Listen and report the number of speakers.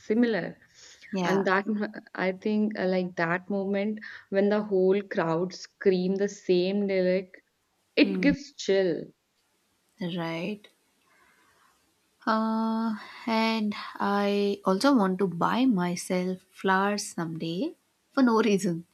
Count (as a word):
two